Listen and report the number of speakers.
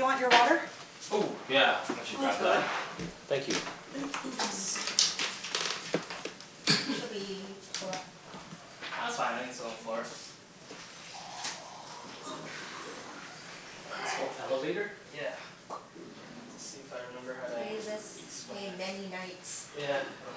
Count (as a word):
four